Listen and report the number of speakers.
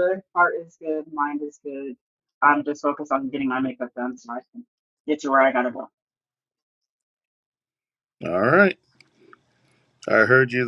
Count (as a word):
two